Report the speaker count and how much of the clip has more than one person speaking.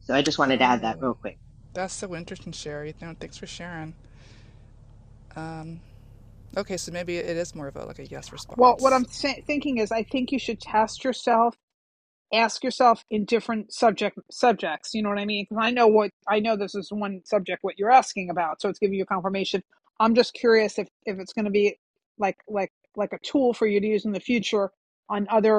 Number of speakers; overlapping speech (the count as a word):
three, about 5%